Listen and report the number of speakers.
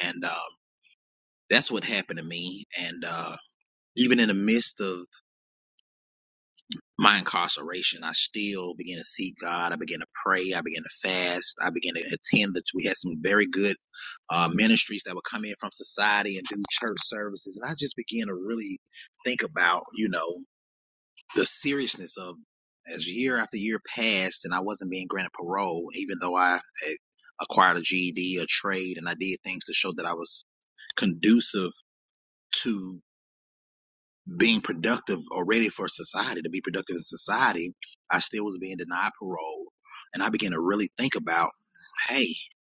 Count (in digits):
1